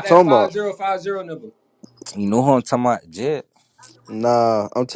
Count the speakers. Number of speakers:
3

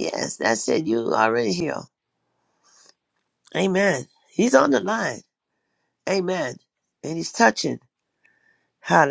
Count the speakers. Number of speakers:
1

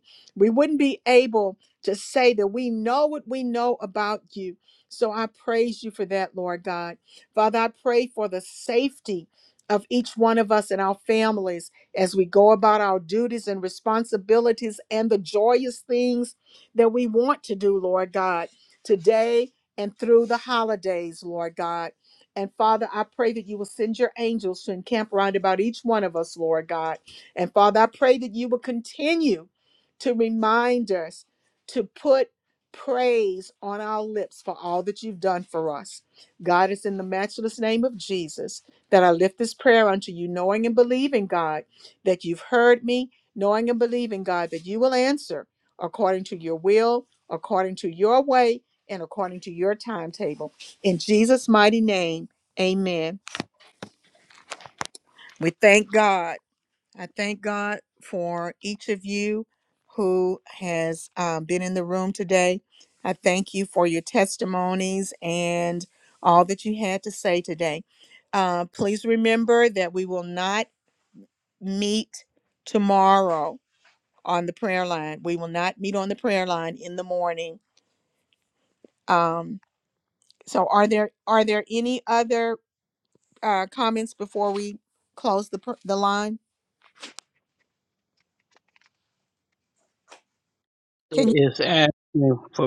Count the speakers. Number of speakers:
2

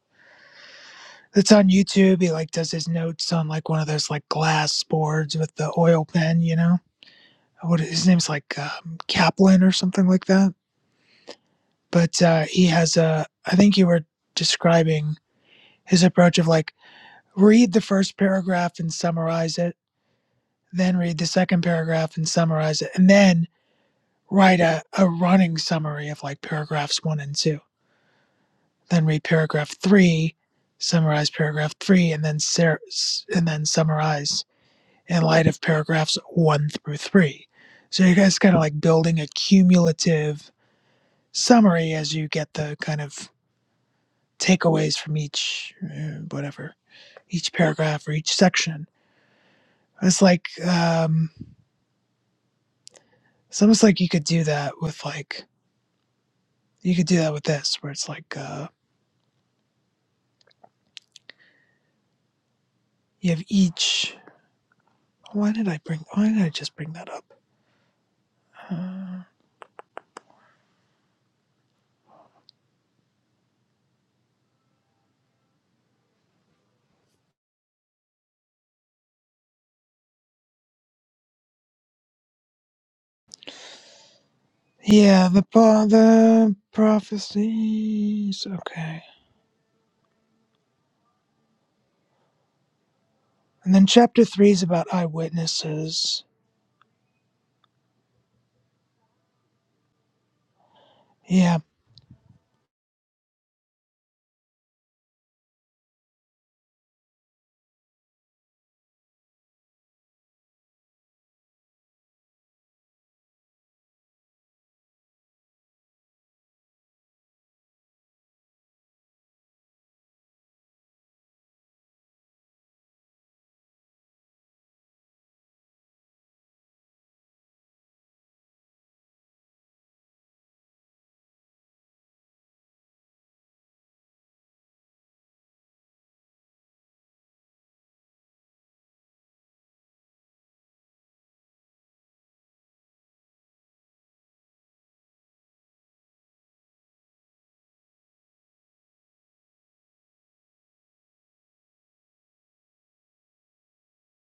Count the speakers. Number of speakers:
1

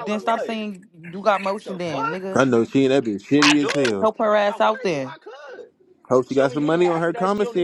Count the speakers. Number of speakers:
3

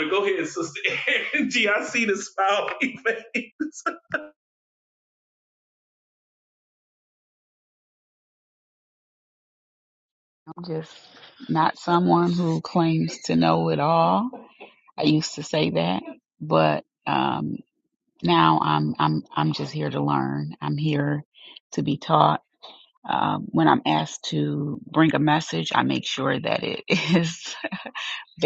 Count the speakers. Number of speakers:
2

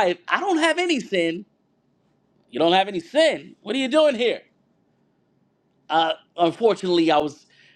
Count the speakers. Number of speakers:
1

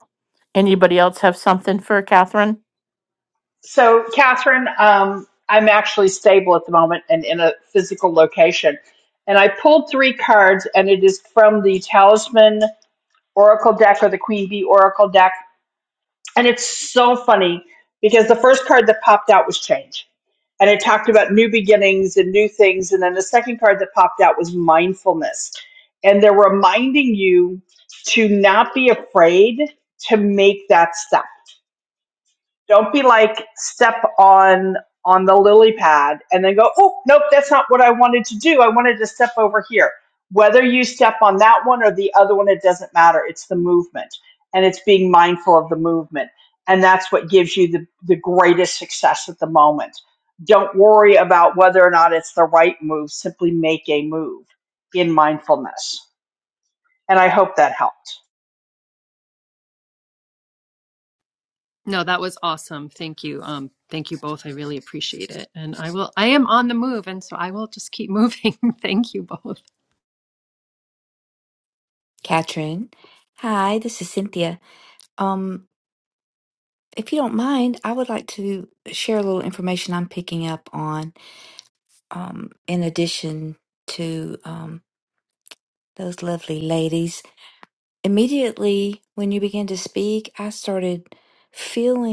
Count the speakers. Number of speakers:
4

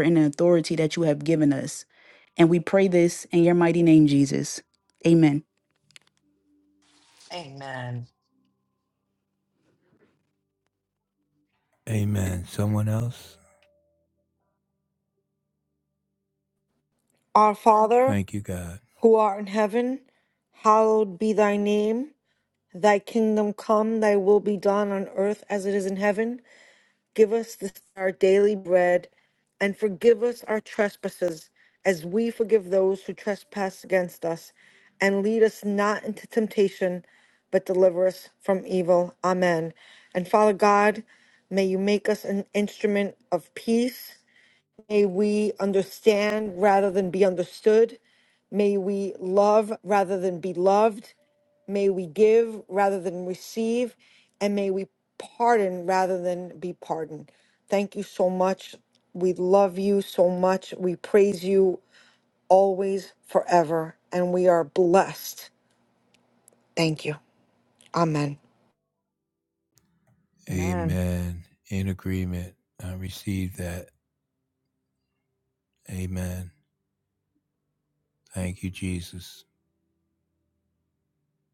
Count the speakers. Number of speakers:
4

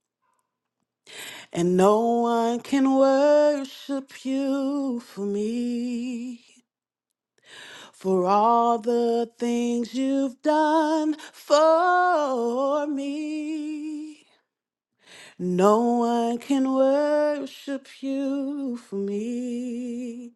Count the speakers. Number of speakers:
1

